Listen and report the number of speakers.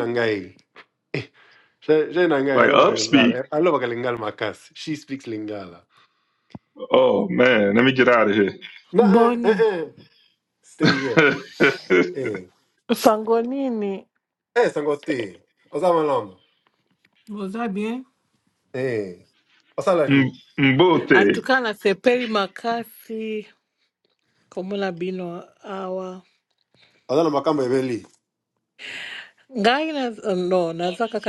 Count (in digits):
3